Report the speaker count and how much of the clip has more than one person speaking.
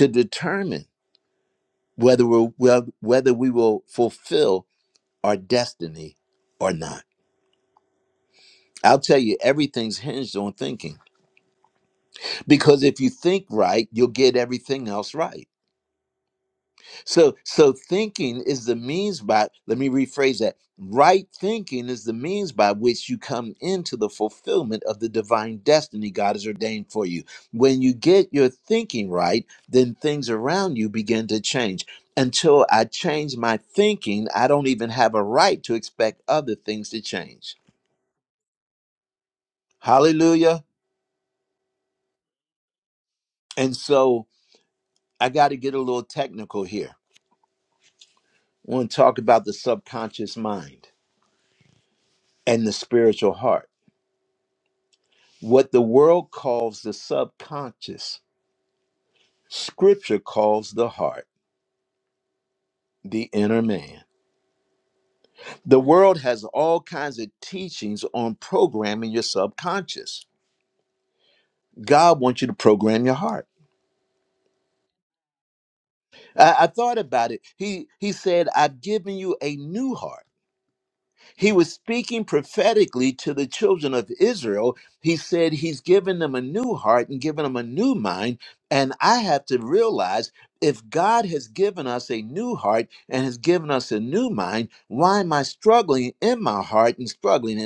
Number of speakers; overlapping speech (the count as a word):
one, no overlap